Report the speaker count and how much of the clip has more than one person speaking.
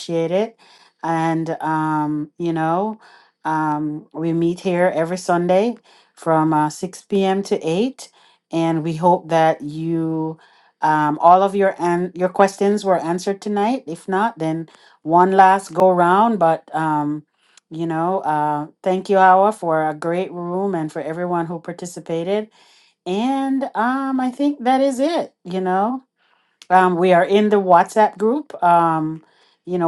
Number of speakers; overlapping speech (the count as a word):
one, no overlap